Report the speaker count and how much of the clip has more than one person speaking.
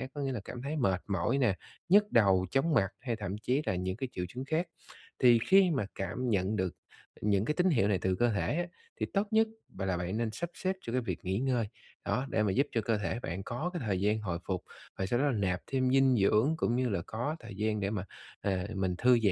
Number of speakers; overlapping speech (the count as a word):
one, no overlap